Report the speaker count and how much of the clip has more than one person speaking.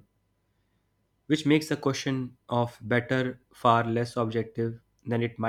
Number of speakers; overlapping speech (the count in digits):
1, no overlap